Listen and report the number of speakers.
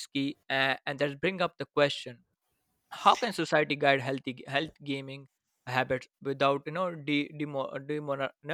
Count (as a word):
one